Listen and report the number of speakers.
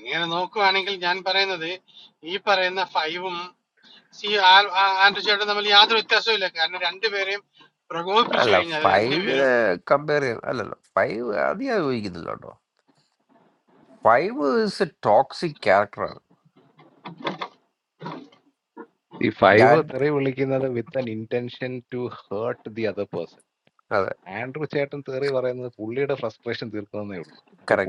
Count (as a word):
three